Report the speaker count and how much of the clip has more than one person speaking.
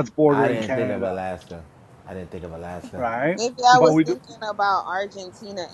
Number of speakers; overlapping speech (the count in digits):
3, about 24%